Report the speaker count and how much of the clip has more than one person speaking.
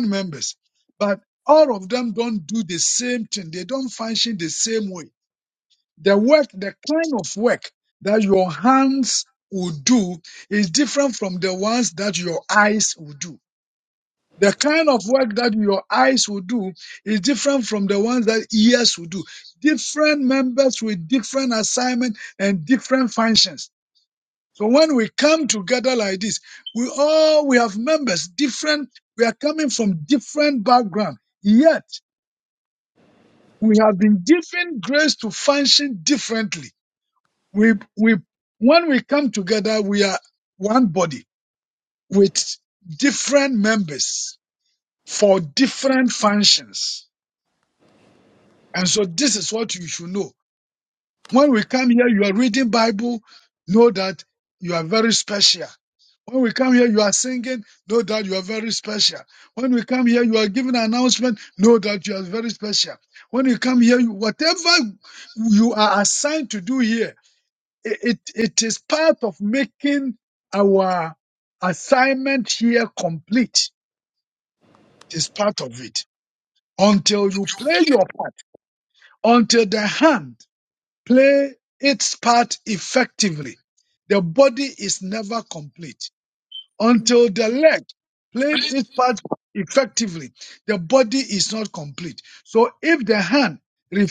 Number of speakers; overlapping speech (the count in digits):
1, no overlap